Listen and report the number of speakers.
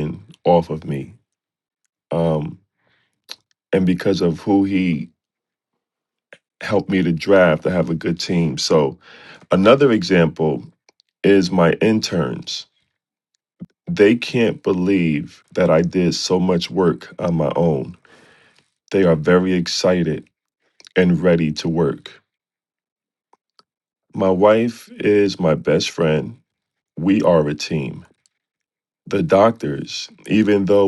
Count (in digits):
1